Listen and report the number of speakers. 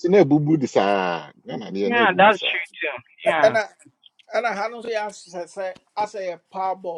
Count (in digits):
3